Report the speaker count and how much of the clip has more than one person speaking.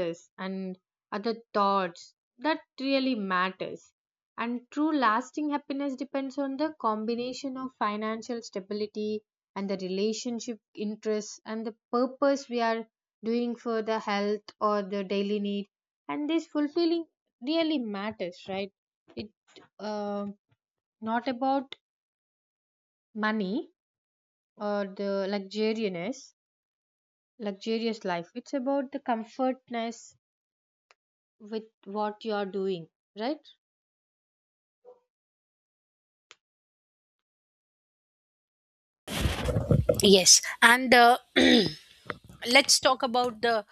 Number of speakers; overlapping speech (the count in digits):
2, no overlap